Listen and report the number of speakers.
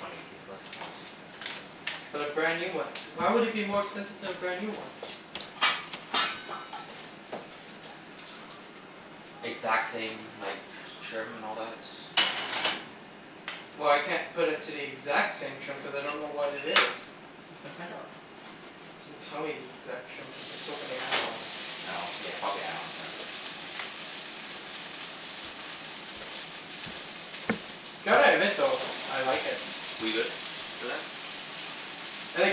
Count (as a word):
two